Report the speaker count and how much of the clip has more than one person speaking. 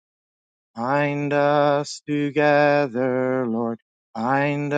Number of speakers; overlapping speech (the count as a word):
one, no overlap